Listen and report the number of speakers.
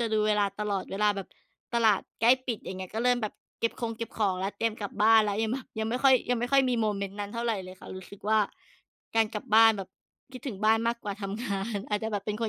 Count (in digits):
1